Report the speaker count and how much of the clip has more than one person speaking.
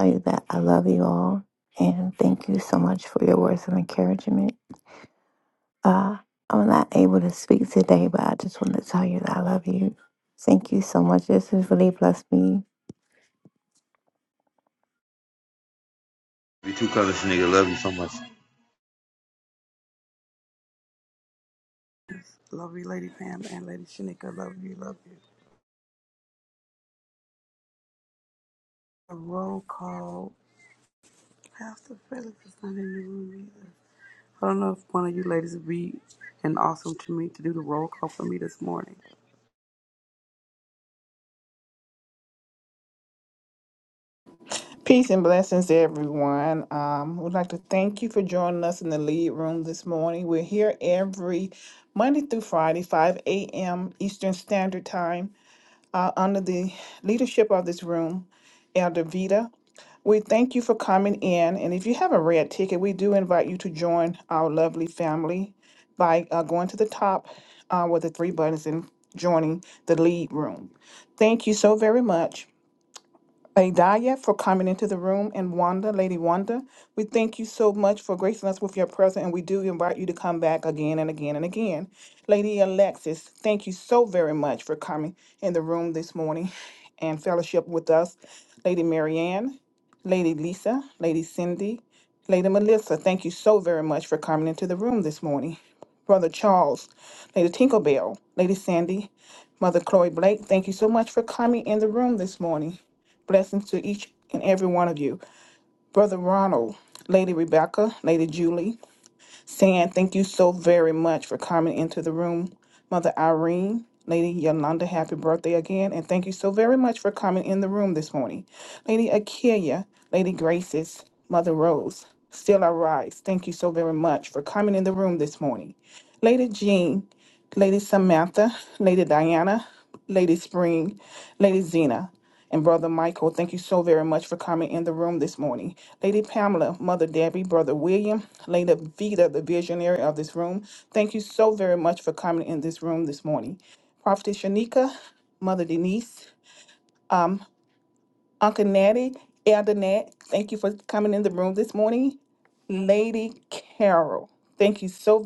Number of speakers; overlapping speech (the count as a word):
four, no overlap